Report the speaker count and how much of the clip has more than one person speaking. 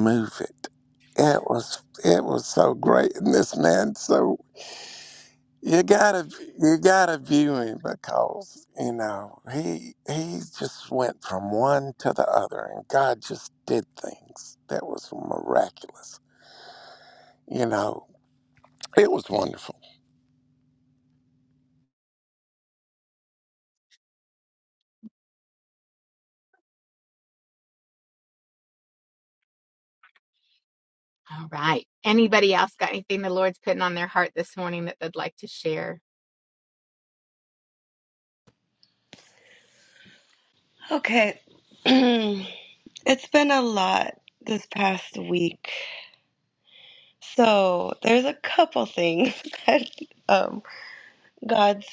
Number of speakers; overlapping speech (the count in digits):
3, no overlap